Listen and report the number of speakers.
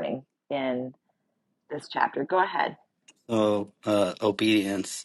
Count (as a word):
two